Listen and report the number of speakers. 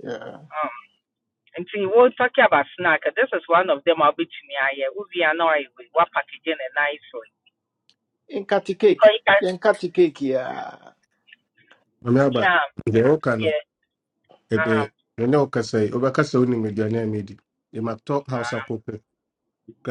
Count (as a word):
three